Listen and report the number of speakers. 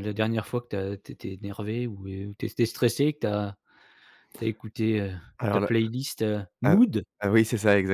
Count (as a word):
two